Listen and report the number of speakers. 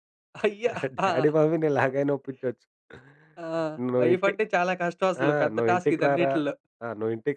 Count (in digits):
2